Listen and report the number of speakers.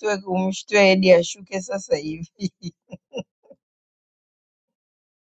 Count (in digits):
1